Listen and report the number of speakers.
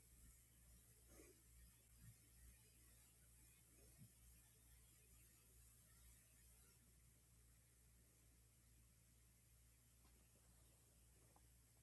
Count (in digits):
0